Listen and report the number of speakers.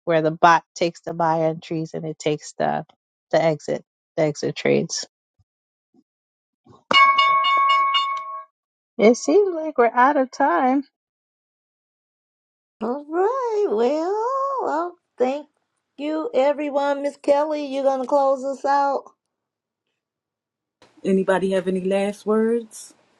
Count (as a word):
three